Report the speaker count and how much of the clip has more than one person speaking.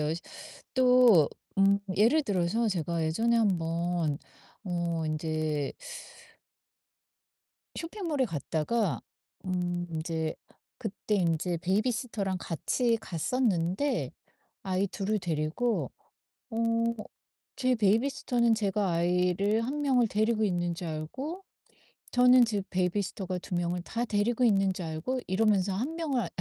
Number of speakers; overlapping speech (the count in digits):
1, no overlap